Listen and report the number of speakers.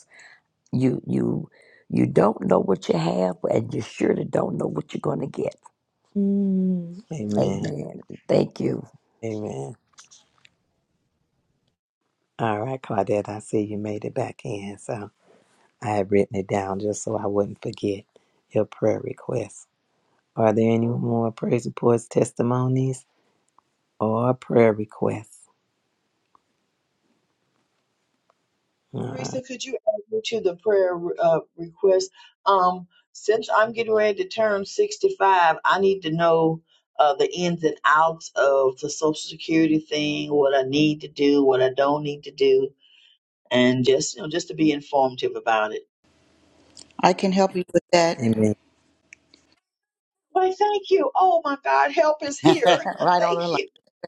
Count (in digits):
4